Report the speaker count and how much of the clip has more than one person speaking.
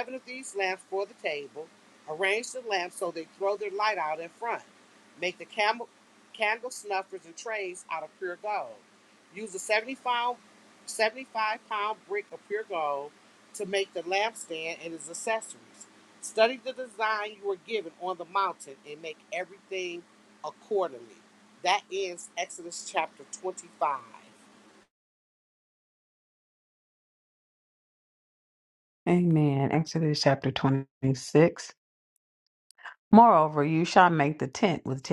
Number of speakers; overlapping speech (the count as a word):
two, no overlap